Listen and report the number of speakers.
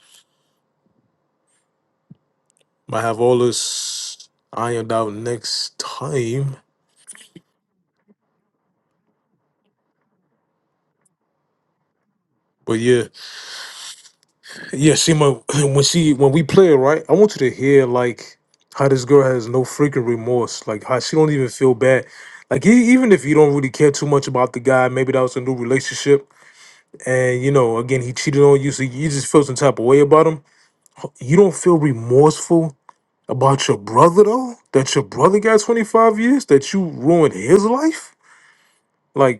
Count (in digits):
1